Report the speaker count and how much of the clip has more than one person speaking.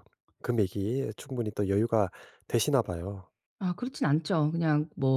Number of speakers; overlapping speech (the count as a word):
two, no overlap